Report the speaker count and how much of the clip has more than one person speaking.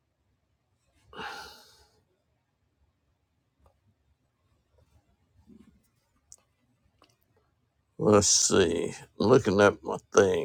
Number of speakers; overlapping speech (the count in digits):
1, no overlap